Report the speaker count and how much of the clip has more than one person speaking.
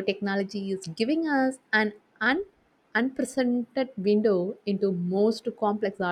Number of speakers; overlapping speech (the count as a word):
one, no overlap